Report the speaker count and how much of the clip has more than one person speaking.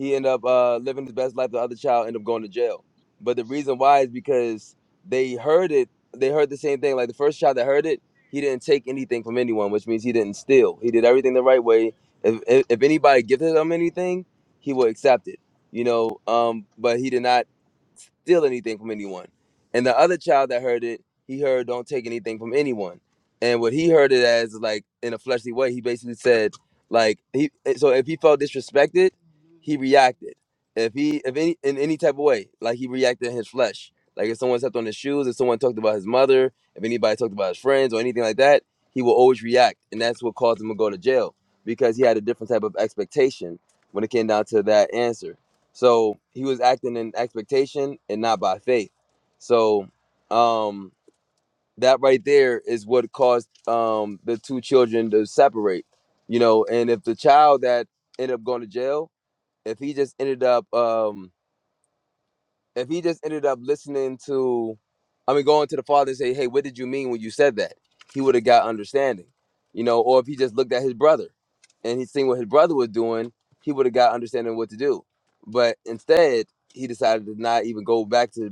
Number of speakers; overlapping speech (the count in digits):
1, no overlap